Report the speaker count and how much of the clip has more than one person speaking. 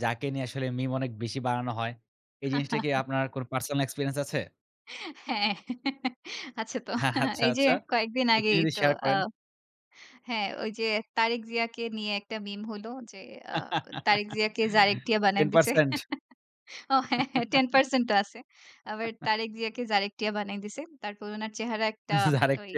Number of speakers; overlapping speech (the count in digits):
2, about 7%